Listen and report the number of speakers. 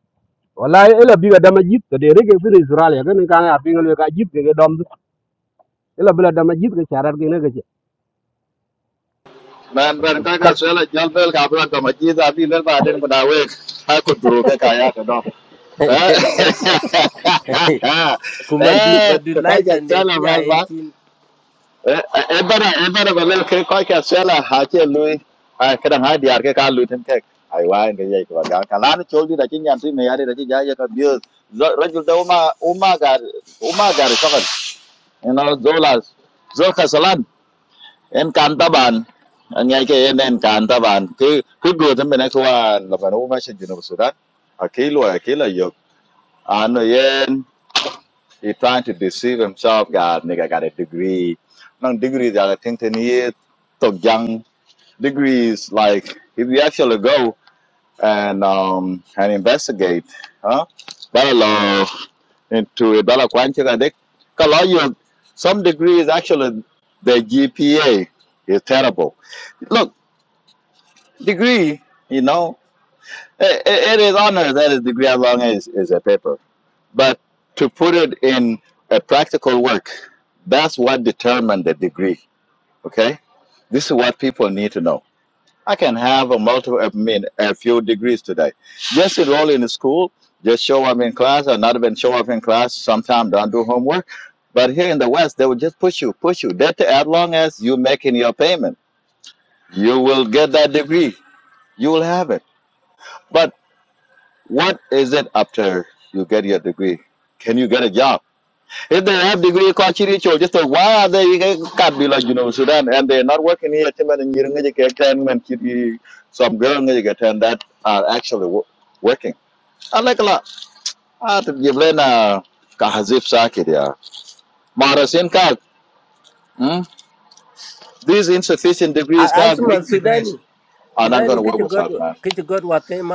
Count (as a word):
three